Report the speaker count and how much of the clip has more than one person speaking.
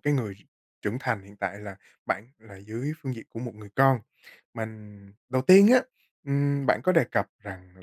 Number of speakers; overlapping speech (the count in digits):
1, no overlap